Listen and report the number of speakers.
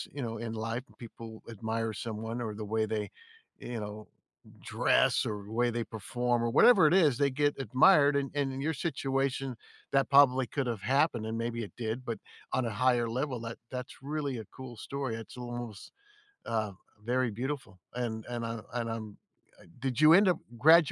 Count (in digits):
1